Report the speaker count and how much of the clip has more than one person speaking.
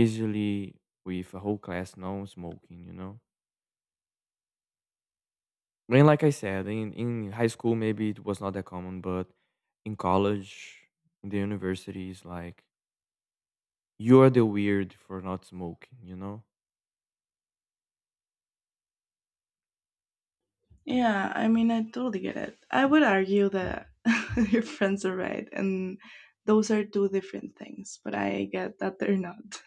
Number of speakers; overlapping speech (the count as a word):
two, no overlap